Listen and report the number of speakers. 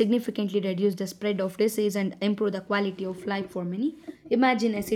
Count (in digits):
1